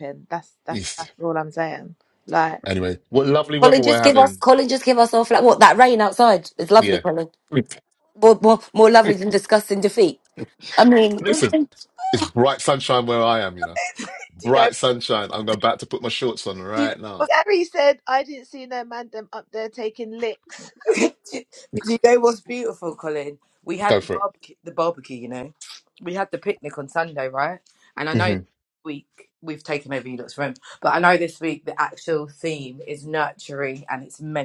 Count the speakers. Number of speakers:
4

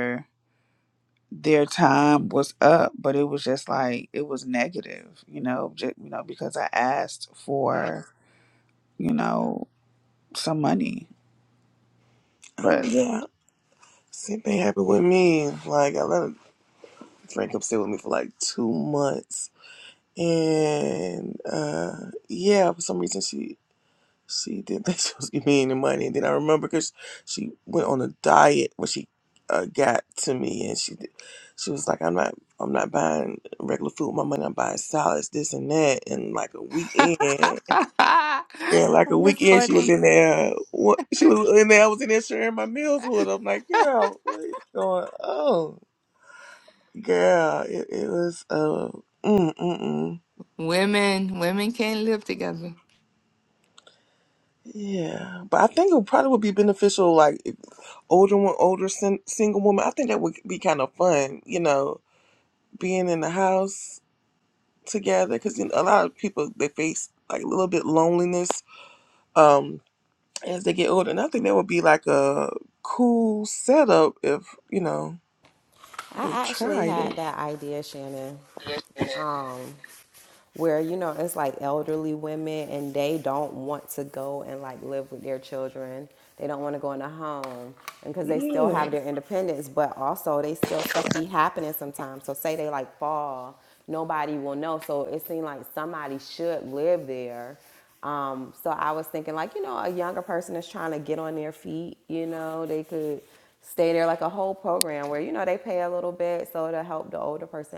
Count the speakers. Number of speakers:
4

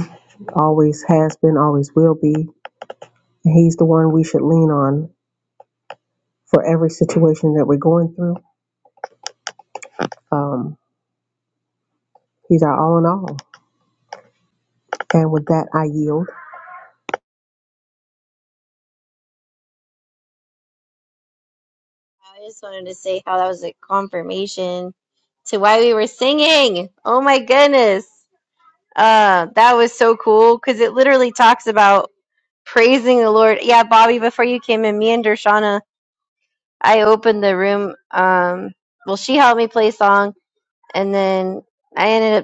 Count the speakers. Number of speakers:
2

